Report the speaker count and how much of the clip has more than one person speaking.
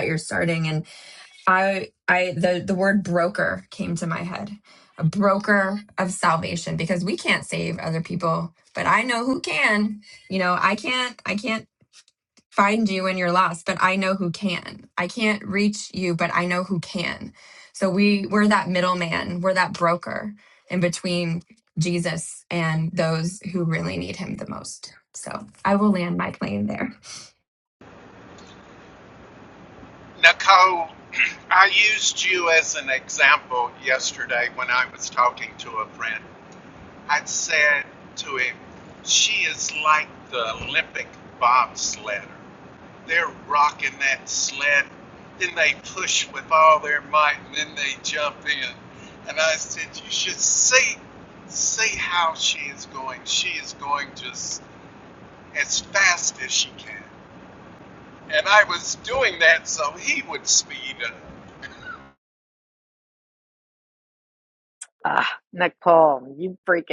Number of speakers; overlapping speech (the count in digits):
3, no overlap